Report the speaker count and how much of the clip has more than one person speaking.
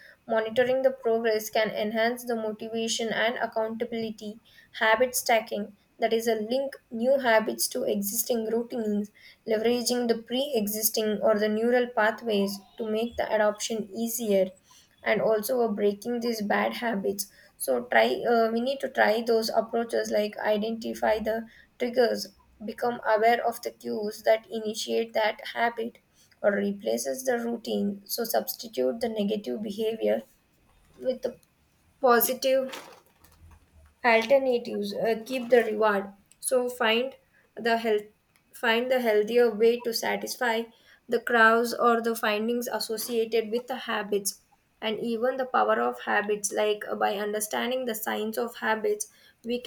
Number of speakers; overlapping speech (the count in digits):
1, no overlap